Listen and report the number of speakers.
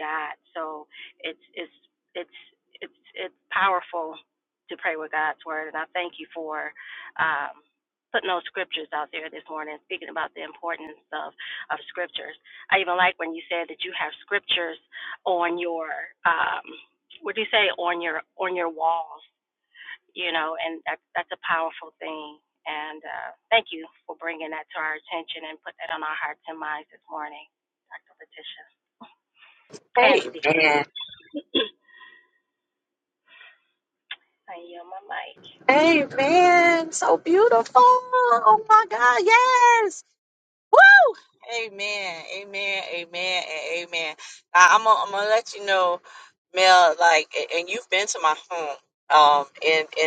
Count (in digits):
2